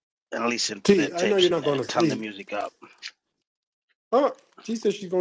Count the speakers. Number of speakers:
two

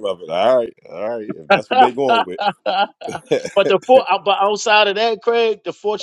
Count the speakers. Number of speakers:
two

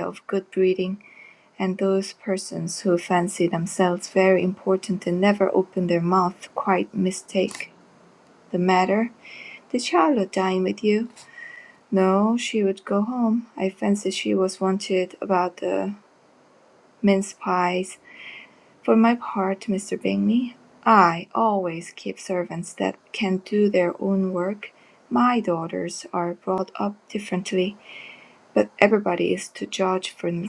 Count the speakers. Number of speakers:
one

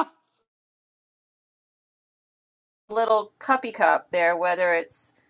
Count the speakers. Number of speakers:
one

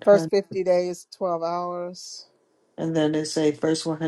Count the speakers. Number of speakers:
two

